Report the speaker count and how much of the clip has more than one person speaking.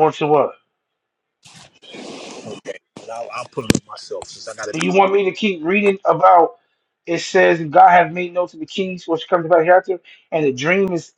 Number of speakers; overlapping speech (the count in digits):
2, about 2%